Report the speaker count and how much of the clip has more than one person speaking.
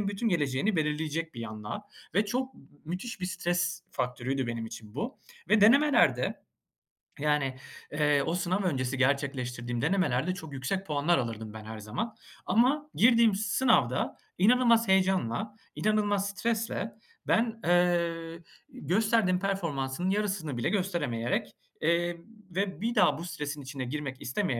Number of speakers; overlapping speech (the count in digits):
1, no overlap